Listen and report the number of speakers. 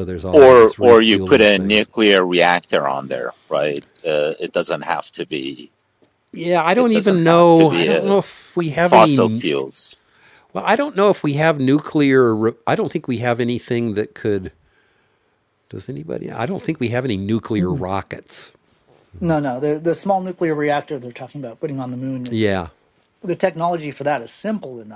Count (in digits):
3